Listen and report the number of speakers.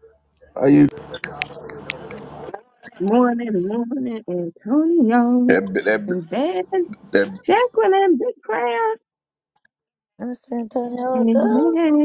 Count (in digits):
3